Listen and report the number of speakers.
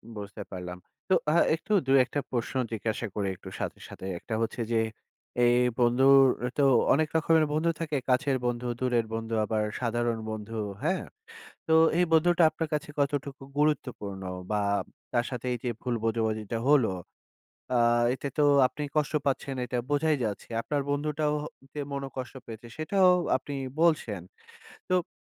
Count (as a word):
one